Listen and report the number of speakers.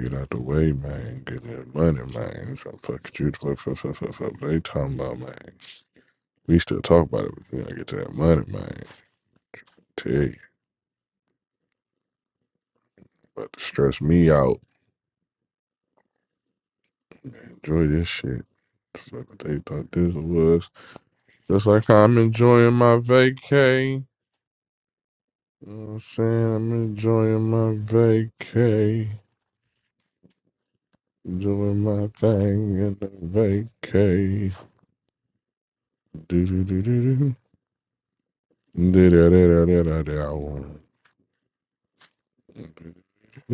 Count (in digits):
1